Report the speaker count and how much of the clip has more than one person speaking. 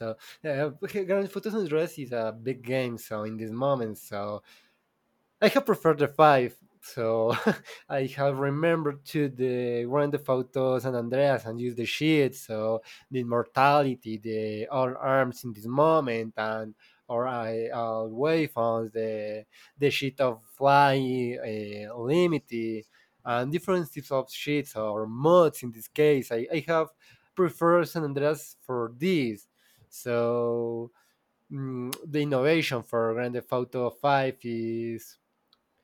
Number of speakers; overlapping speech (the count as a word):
one, no overlap